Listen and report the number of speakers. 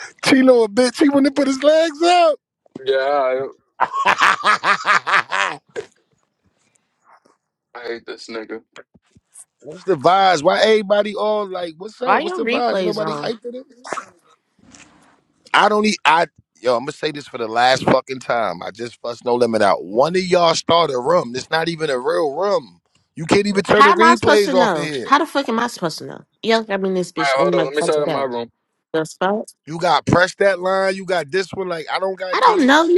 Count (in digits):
3